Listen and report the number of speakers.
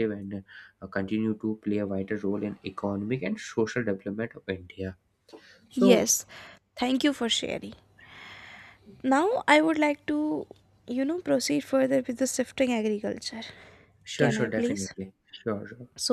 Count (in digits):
2